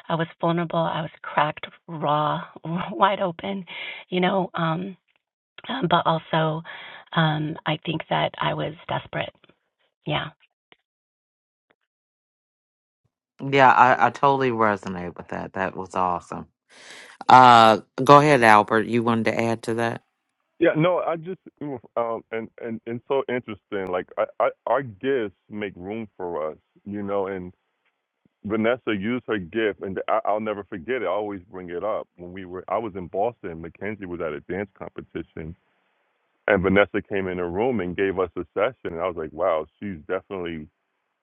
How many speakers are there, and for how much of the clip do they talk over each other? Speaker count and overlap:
3, no overlap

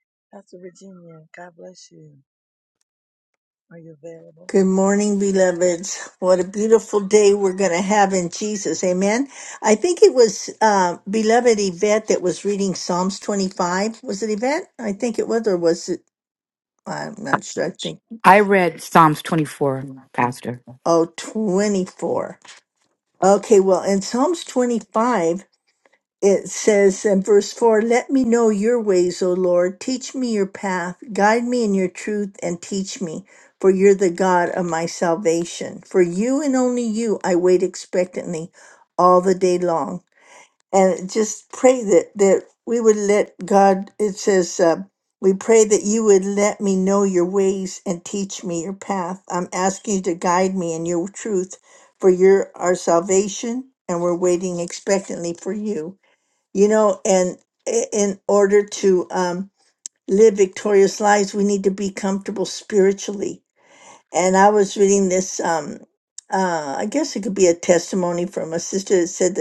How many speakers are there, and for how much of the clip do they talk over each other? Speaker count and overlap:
3, no overlap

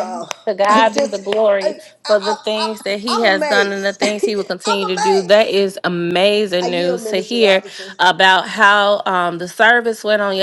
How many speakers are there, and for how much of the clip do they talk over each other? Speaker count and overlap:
2, about 44%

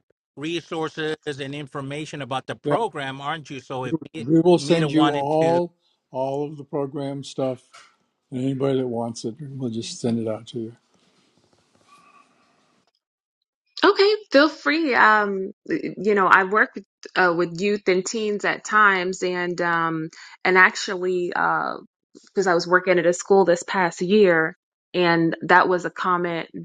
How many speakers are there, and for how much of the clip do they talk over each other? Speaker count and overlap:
3, about 5%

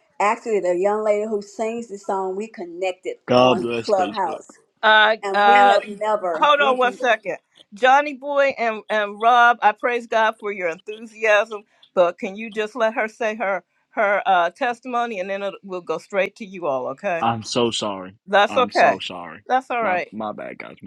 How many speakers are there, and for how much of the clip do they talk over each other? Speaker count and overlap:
3, about 14%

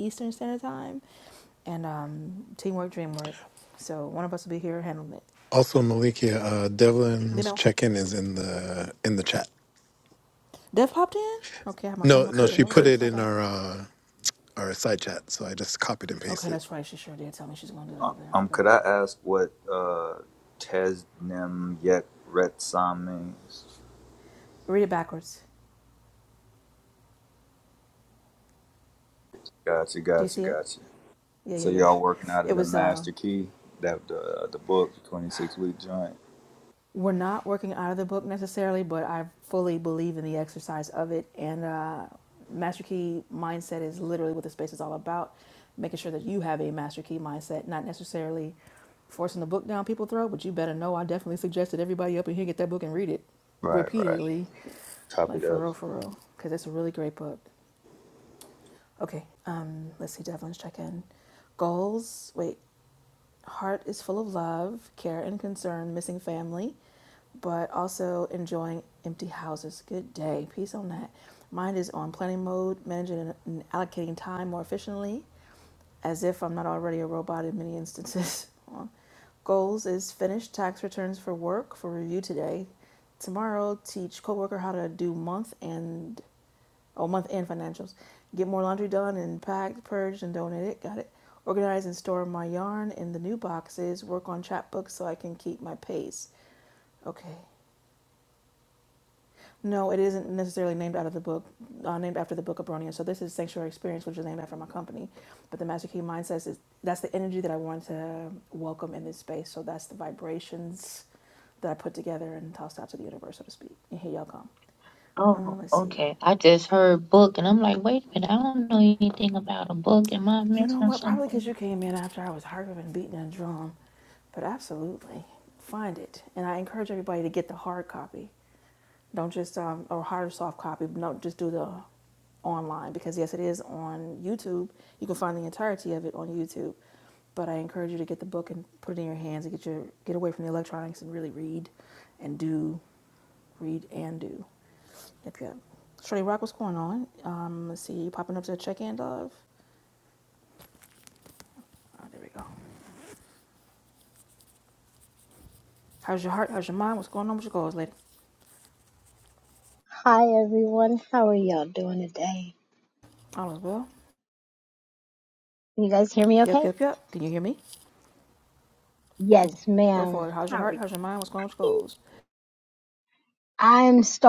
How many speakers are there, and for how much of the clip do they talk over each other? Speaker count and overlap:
5, about 4%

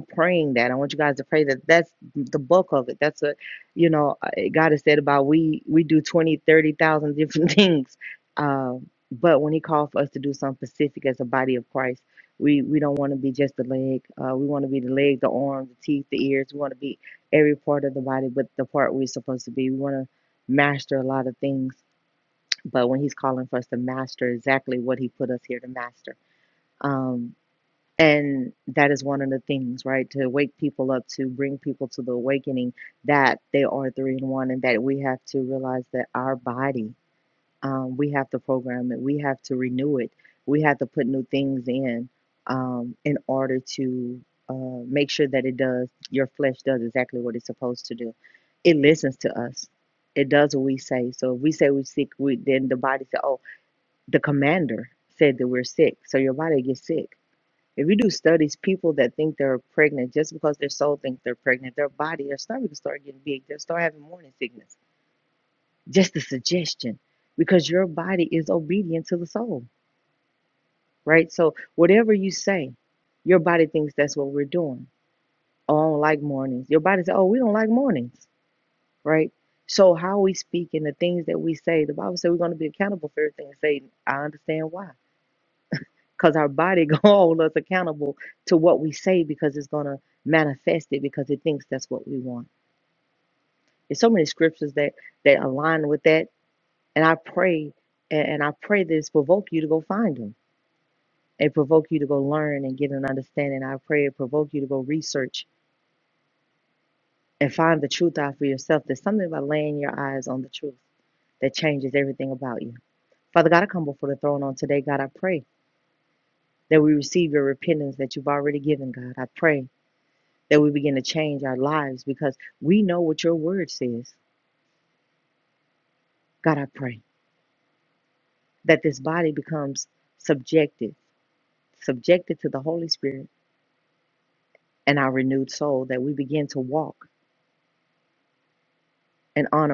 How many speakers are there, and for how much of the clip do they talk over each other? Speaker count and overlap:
1, no overlap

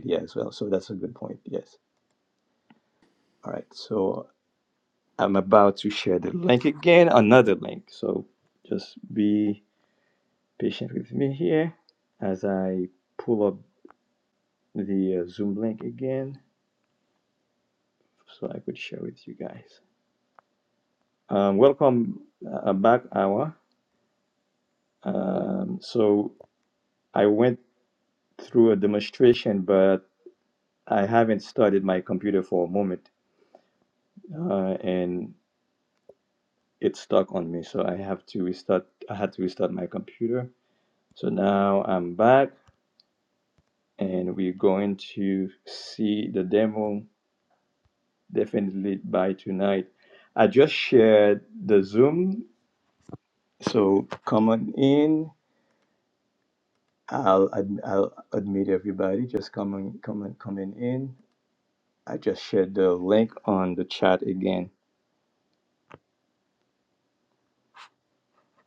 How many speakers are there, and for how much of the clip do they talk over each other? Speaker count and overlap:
1, no overlap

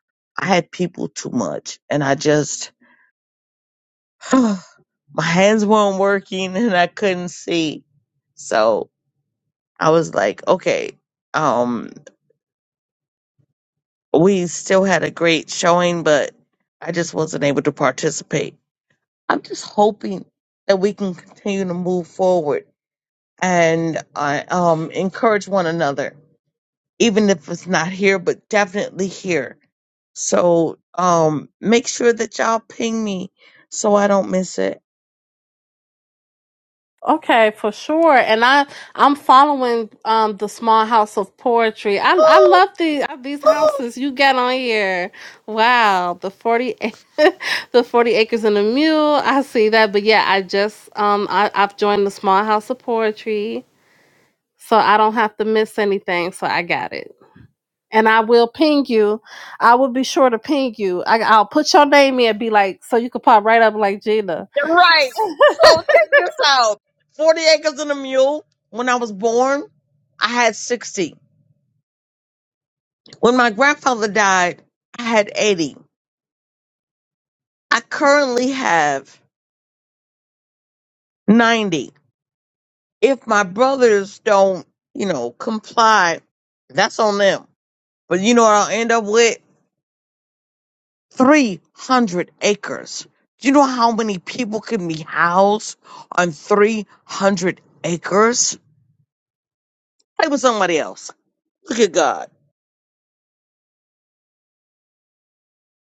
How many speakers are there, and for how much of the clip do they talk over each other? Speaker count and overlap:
2, no overlap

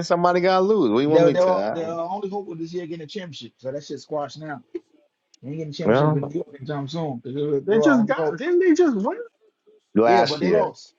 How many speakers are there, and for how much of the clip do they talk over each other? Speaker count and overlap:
3, about 23%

